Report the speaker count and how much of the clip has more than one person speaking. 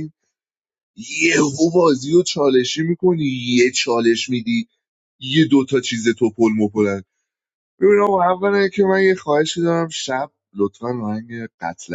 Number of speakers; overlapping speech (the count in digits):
1, no overlap